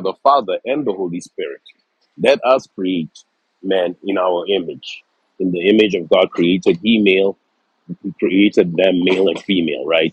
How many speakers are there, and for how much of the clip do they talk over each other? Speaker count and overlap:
one, no overlap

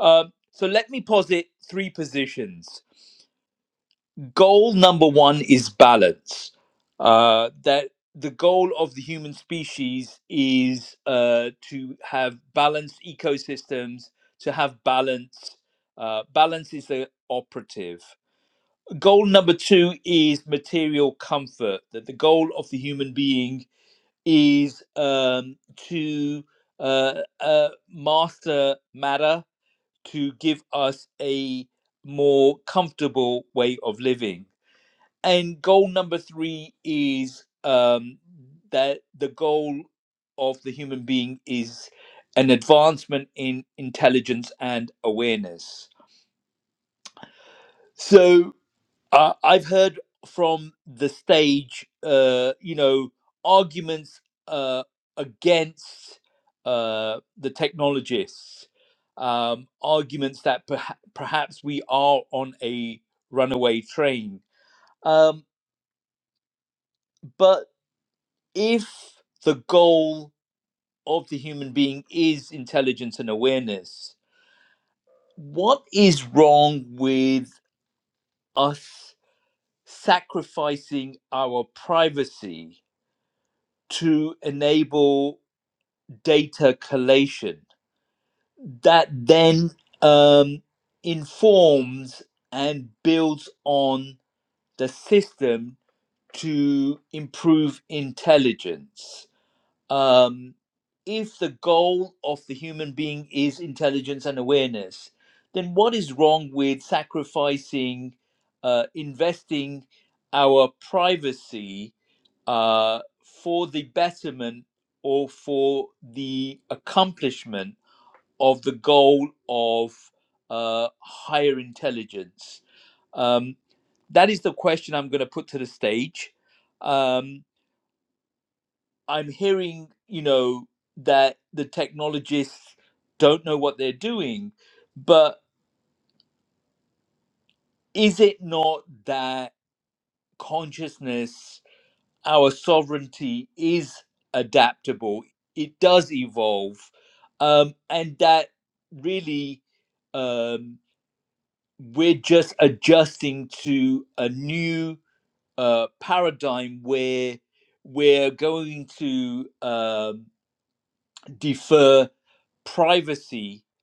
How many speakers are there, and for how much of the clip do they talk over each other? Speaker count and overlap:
one, no overlap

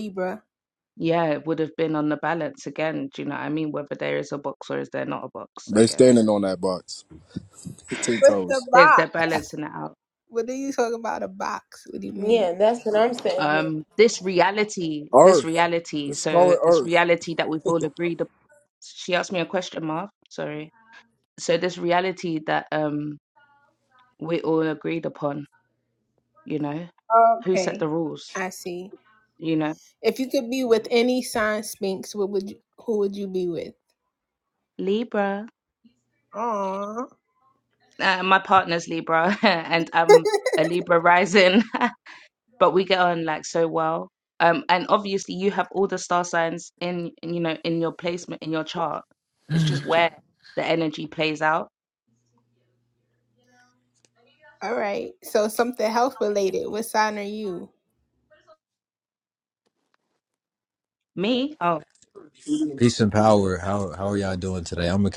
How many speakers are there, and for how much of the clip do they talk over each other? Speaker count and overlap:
five, about 5%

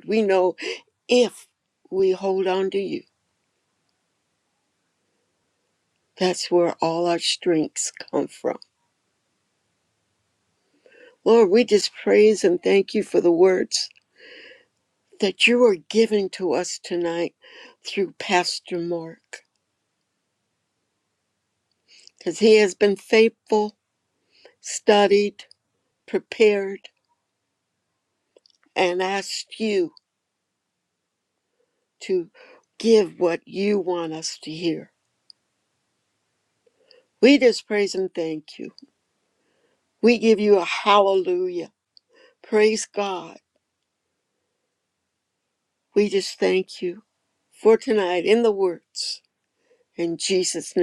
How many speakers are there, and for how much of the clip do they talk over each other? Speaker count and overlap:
one, no overlap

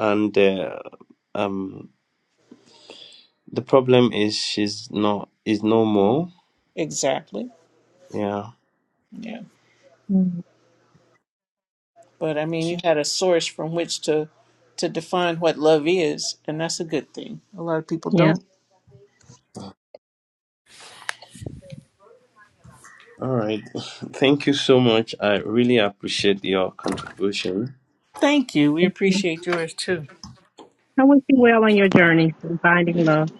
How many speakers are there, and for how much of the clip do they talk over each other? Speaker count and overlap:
three, about 1%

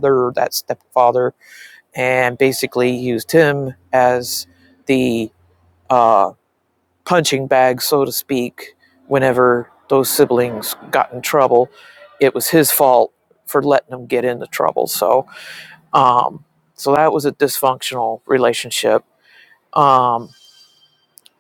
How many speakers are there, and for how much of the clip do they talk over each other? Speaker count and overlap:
one, no overlap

